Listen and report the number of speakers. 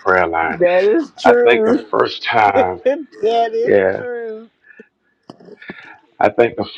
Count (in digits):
2